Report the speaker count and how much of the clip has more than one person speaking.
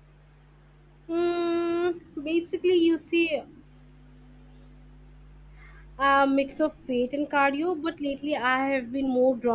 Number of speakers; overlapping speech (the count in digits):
1, no overlap